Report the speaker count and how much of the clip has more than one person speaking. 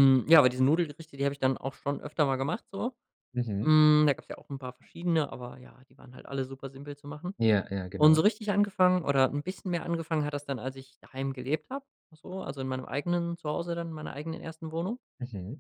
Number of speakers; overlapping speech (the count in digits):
2, about 2%